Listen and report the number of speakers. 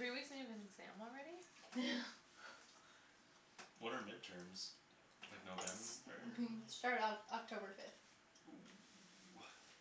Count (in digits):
3